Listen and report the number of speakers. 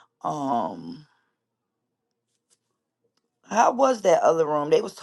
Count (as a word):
one